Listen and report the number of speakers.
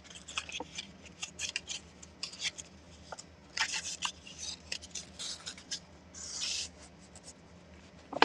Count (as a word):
zero